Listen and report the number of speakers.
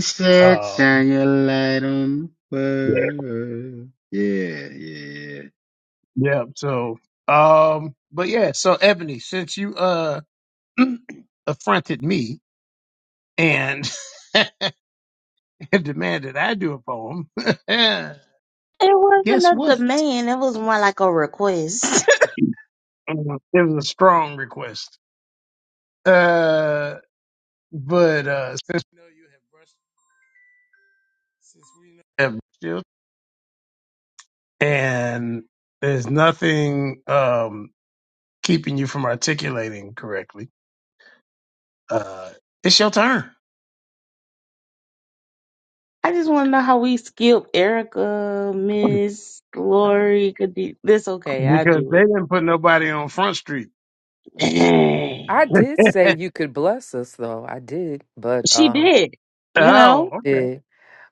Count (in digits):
4